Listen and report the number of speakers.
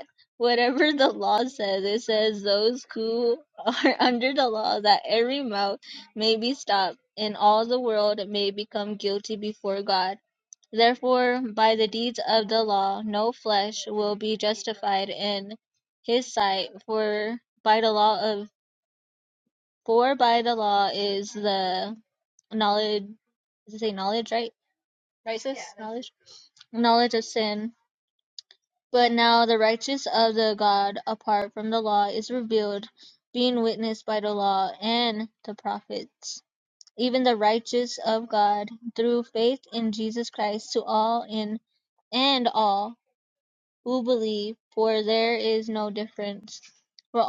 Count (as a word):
one